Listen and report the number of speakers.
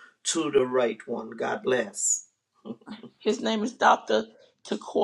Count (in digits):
2